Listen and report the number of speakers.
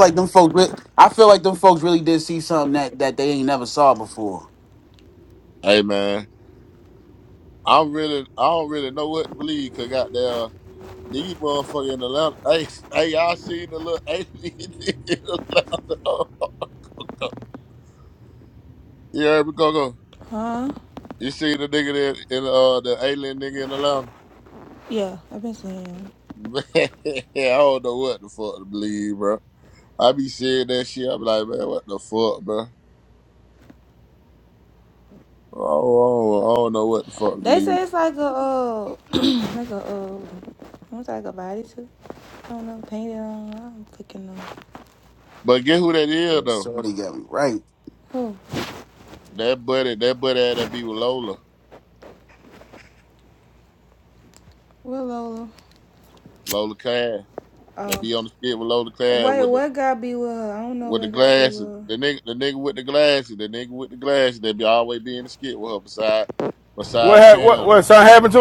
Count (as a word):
four